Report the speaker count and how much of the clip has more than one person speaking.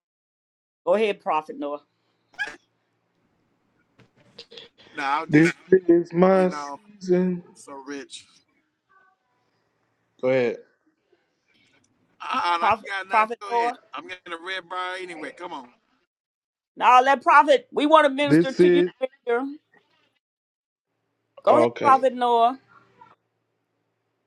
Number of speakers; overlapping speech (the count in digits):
3, about 10%